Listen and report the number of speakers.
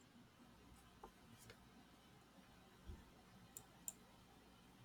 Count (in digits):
0